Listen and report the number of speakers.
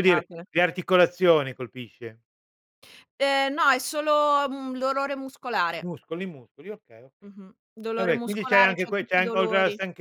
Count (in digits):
2